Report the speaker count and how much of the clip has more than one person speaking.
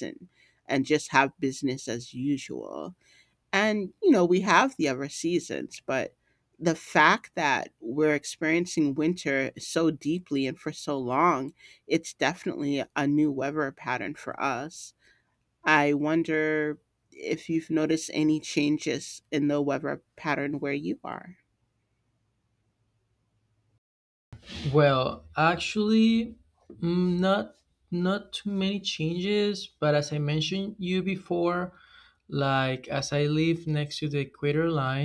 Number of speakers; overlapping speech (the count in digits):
2, no overlap